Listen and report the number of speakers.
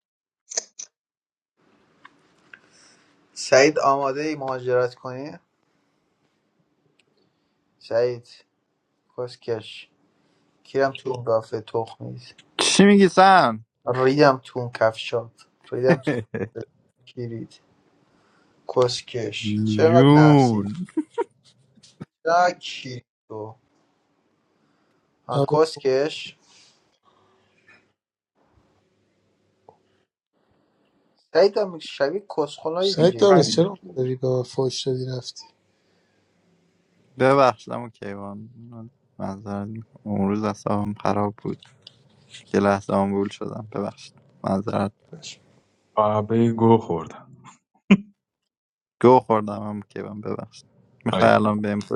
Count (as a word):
four